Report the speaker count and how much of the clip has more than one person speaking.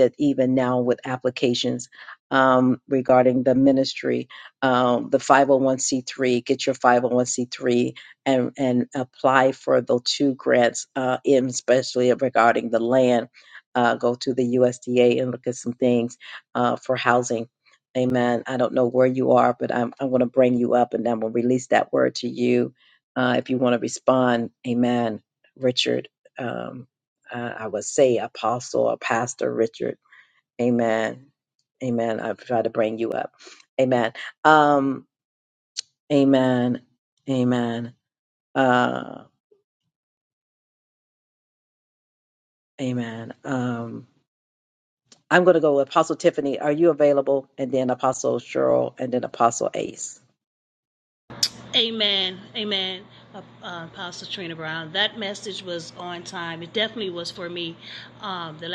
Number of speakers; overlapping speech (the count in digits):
2, no overlap